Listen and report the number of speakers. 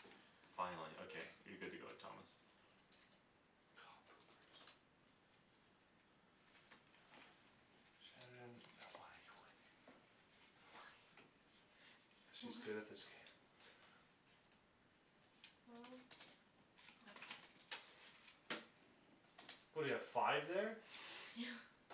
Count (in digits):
3